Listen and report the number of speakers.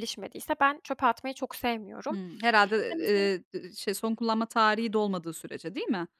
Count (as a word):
two